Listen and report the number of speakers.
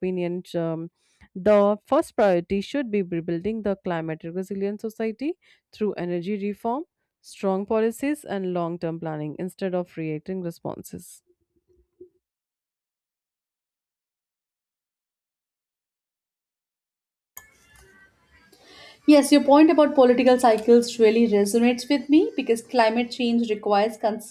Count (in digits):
2